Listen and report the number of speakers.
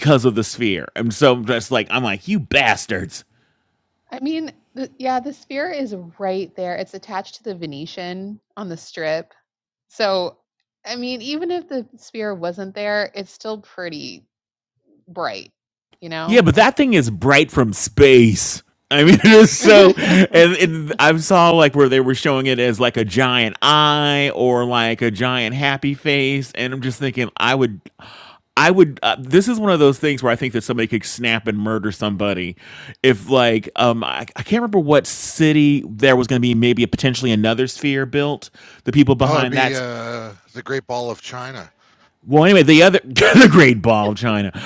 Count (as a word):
three